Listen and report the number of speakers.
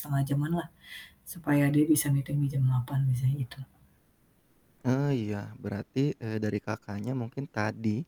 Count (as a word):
two